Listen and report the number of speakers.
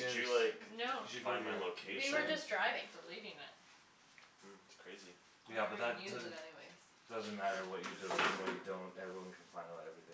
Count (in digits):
4